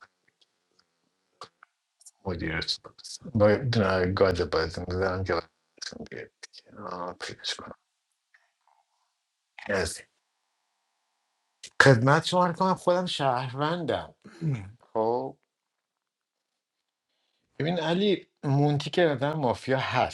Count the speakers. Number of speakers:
1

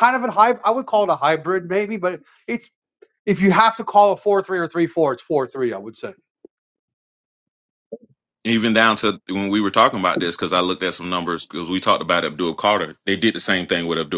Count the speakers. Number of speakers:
2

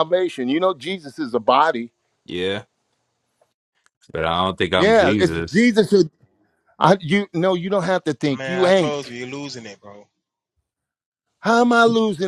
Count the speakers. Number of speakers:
3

